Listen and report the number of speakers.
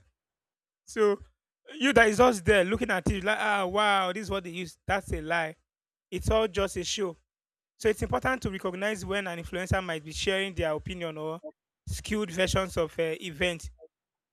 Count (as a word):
one